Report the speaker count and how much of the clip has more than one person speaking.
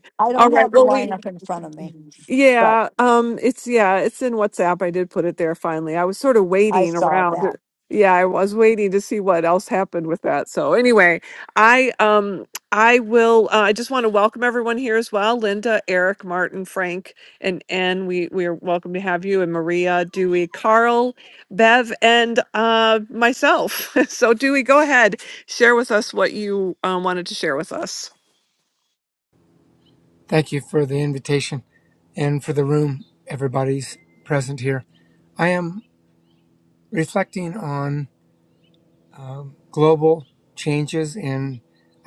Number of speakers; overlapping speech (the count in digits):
3, about 4%